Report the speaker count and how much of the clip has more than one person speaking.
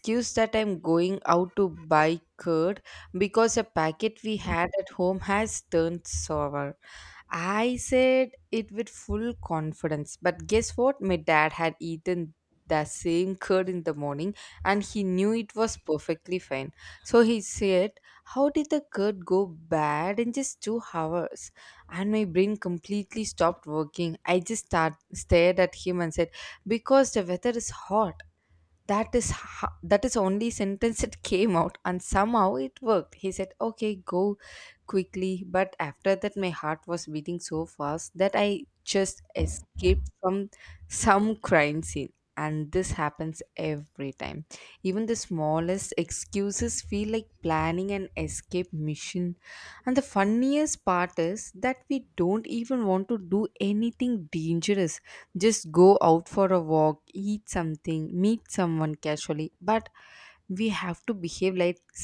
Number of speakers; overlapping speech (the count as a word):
one, no overlap